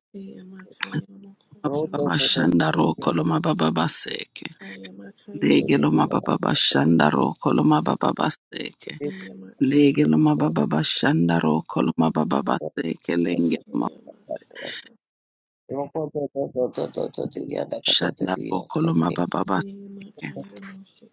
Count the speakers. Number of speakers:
3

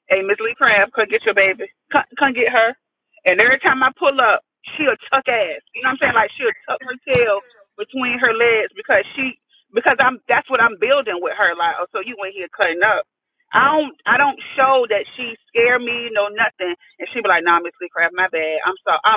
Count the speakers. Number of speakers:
1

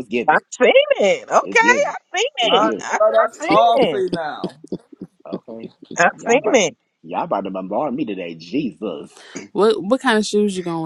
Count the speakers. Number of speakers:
4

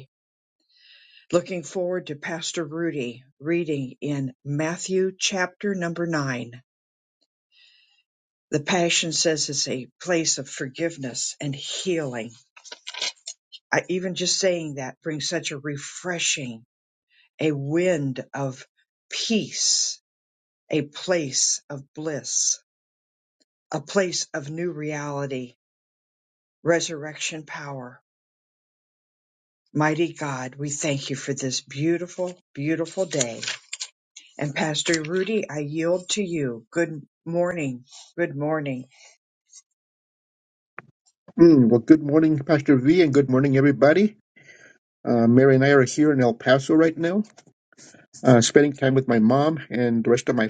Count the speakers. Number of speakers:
2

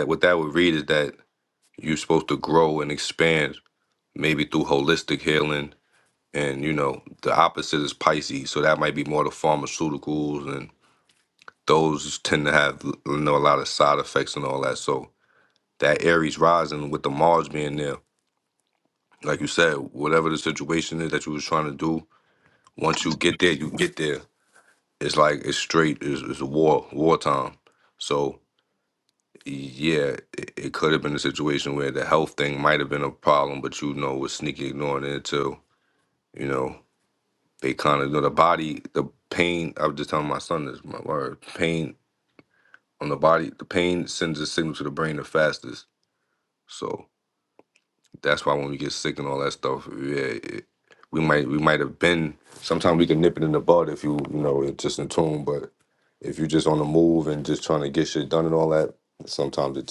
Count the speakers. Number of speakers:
1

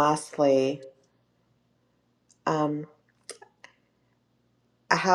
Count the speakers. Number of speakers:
1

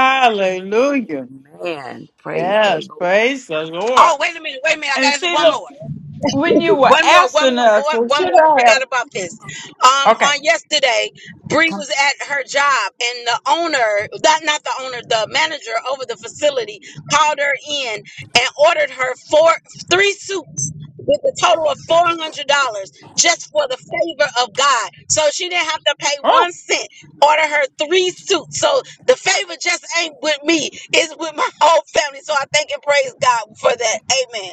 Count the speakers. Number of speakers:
3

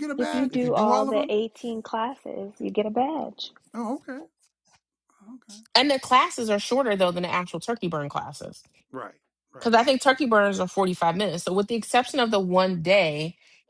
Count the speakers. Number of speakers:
3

